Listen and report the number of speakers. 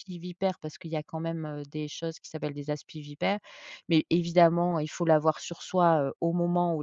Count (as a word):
one